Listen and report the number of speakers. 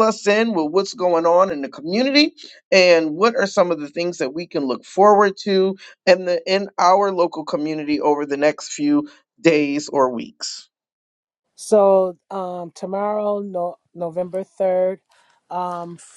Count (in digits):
2